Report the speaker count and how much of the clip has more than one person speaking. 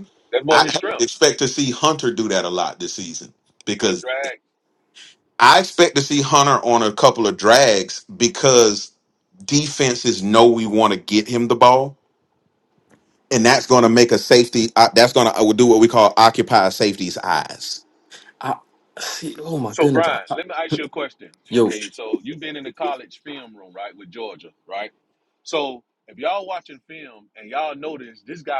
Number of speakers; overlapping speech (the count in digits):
3, about 6%